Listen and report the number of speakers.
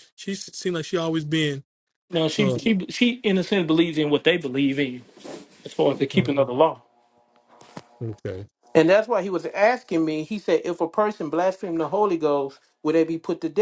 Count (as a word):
two